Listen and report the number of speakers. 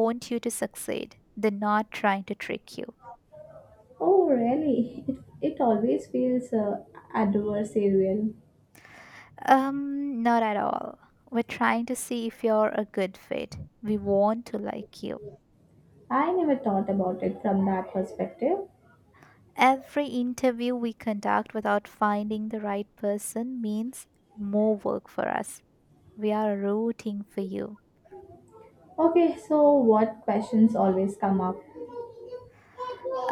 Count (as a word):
two